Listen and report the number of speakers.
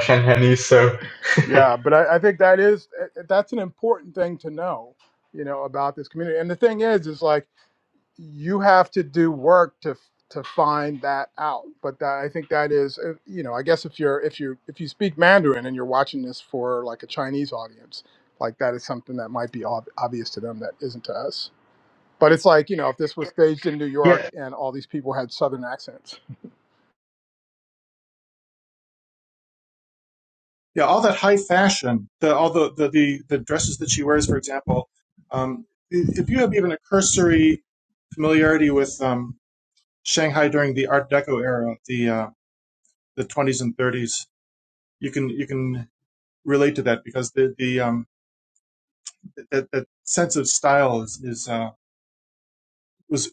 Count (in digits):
3